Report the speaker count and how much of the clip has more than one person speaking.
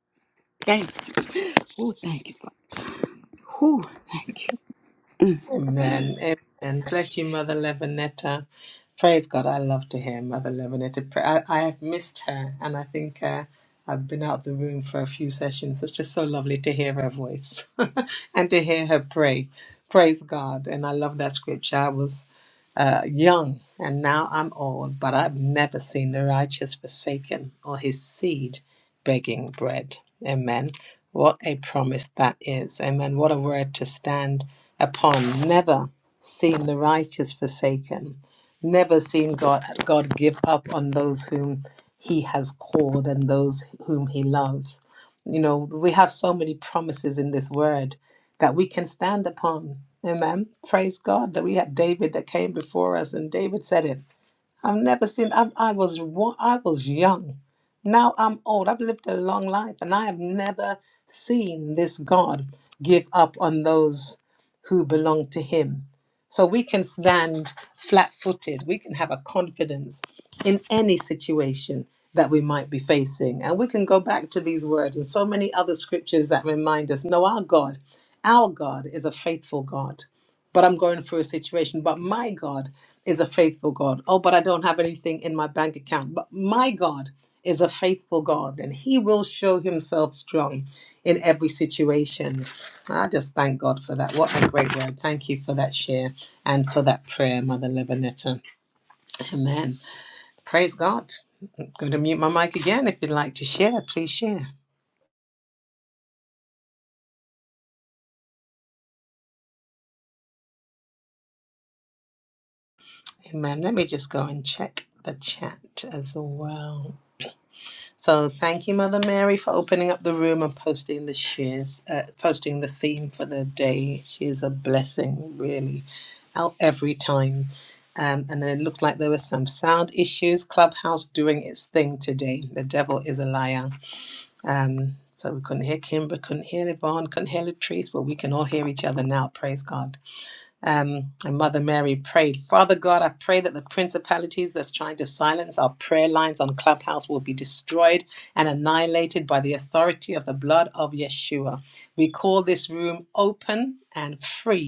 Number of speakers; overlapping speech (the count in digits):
2, no overlap